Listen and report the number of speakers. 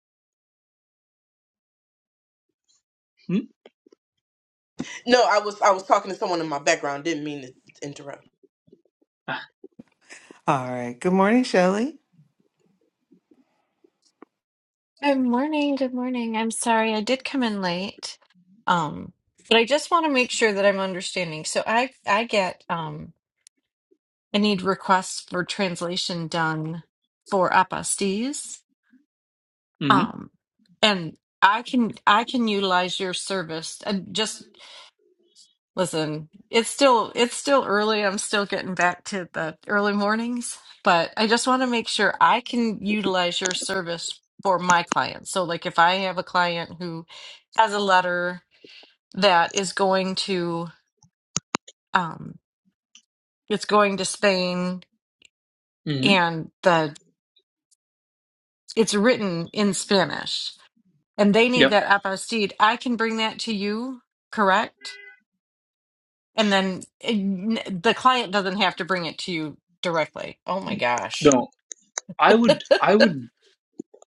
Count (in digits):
4